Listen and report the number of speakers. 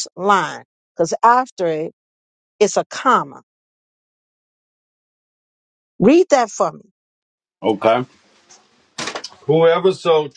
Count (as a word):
two